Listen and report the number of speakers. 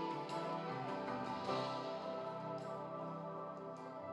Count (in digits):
0